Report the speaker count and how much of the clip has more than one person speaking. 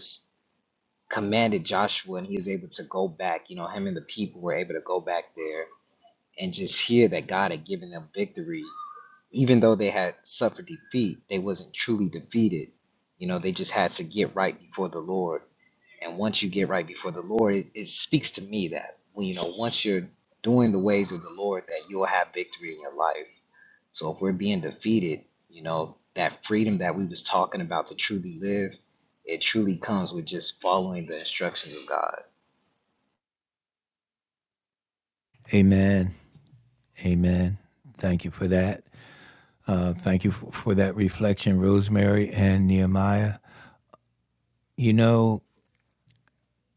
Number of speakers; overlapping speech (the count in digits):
2, no overlap